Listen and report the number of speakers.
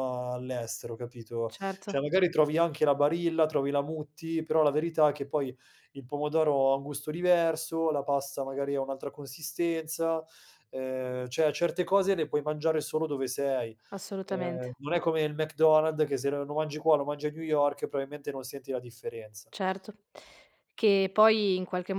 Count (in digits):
2